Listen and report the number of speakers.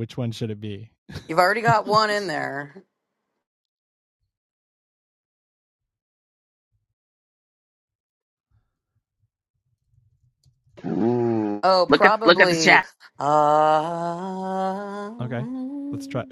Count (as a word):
three